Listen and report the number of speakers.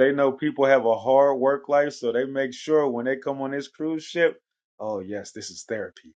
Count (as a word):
one